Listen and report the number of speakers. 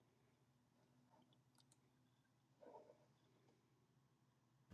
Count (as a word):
zero